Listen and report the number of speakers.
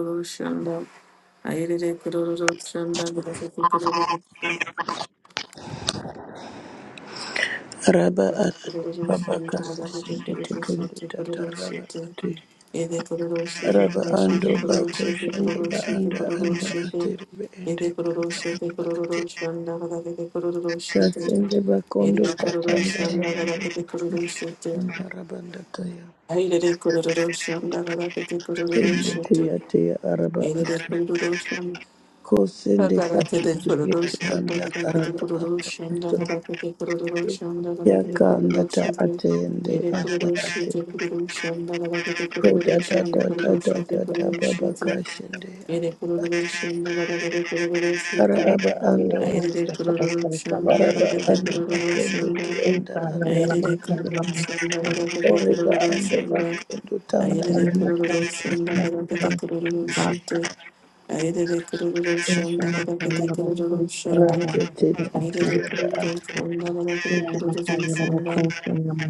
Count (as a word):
three